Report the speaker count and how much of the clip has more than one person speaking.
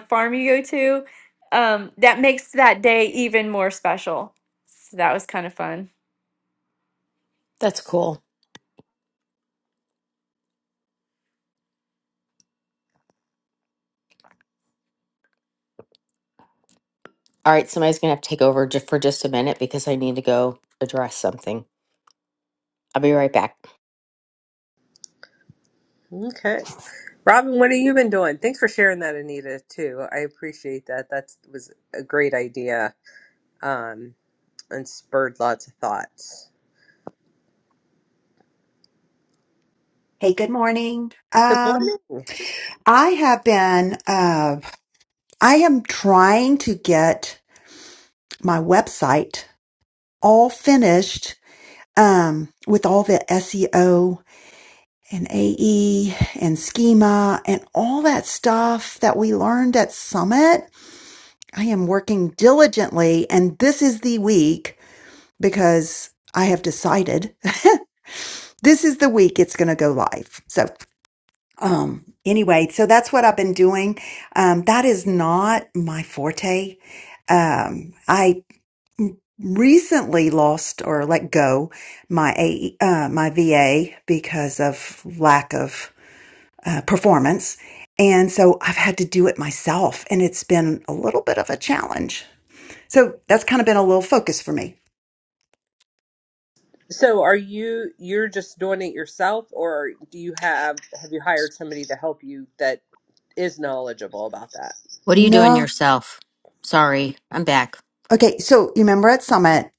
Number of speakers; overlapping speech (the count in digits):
4, about 1%